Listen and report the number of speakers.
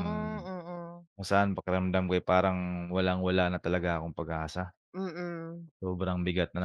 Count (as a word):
two